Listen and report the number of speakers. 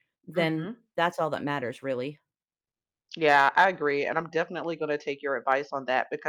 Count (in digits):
2